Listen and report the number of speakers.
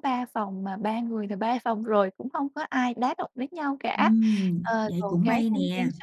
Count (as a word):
two